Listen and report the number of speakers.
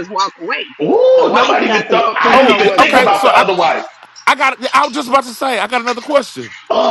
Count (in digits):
3